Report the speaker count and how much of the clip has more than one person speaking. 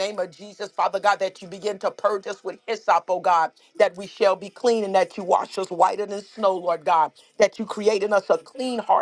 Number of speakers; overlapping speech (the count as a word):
one, no overlap